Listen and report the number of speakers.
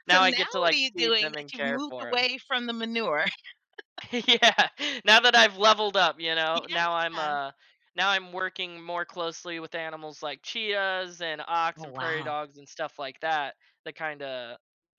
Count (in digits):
2